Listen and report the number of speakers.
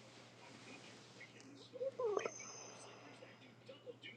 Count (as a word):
zero